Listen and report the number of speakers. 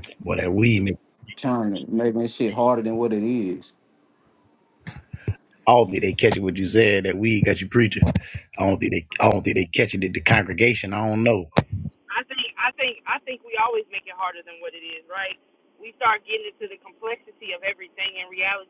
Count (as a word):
three